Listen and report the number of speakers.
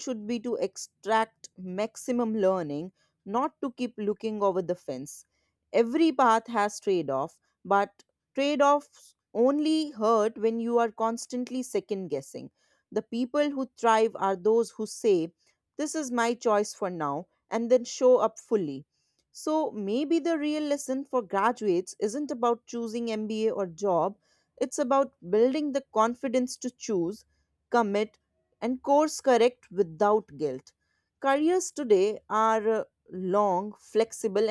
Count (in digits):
1